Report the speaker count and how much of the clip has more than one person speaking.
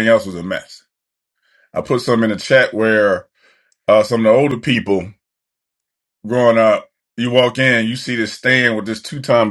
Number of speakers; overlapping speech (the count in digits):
1, no overlap